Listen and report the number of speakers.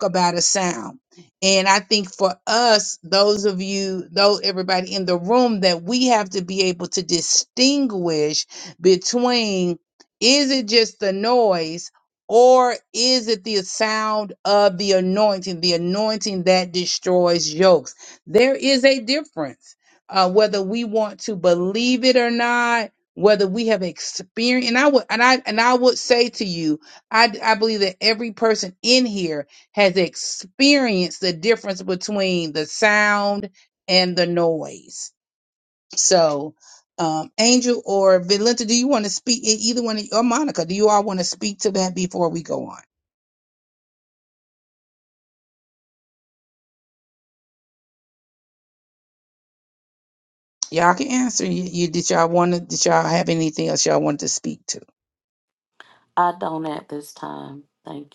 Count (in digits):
2